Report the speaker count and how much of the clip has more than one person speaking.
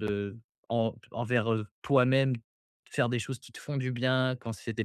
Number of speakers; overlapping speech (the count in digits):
1, no overlap